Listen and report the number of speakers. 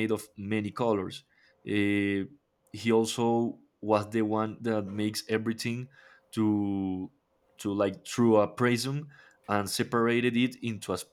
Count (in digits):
1